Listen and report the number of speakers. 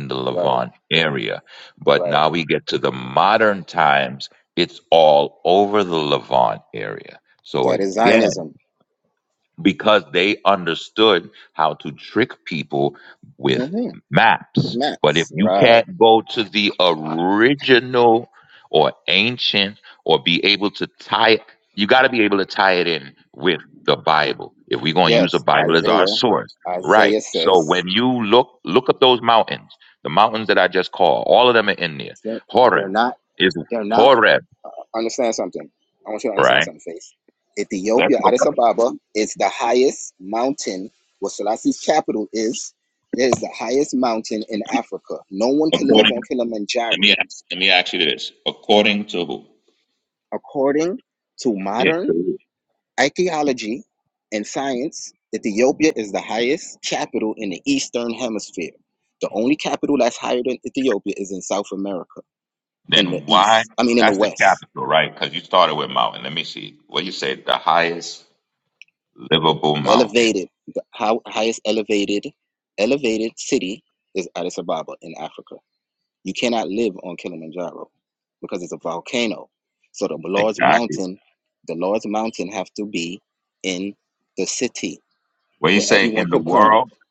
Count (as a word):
two